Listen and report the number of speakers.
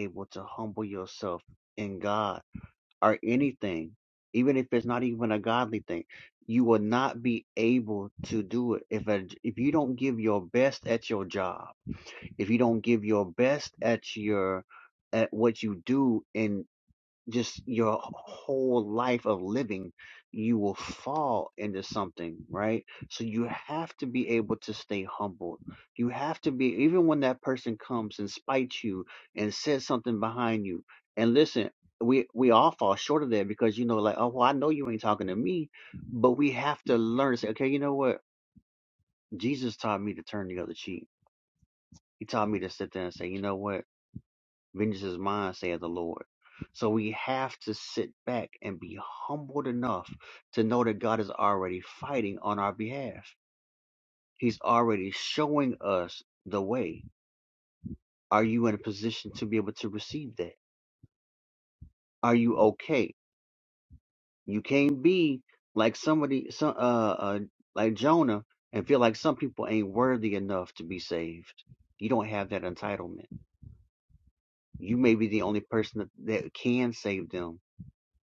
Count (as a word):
one